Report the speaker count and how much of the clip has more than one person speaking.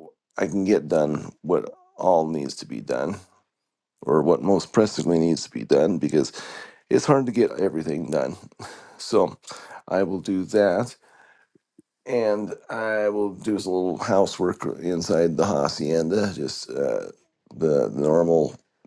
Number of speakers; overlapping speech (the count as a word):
one, no overlap